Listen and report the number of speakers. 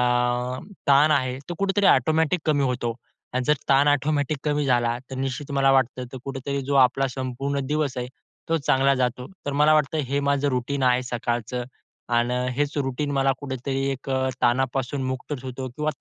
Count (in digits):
1